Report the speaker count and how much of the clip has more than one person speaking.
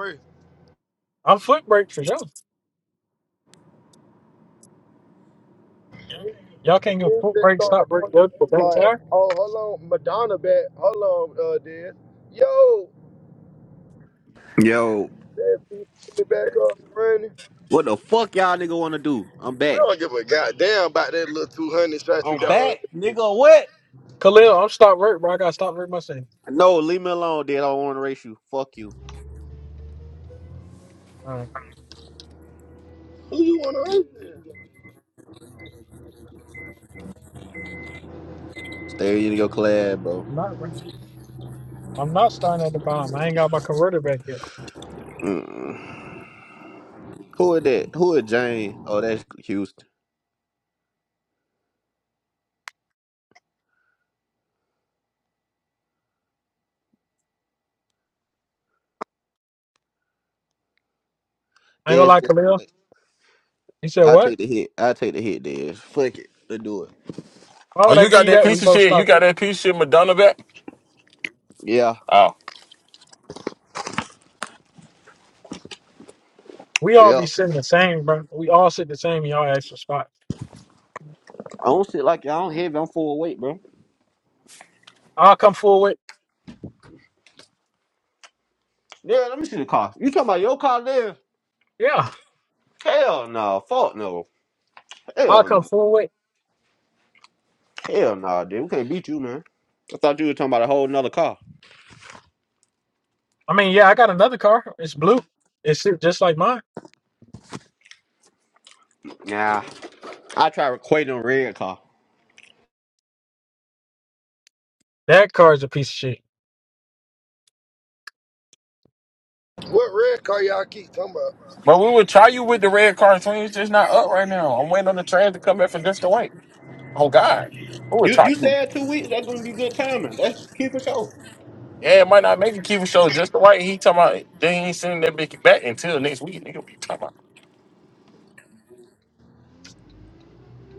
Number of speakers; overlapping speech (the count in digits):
4, about 4%